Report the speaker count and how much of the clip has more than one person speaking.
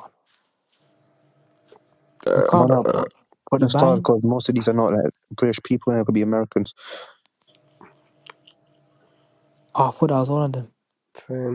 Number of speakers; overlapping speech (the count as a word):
three, about 10%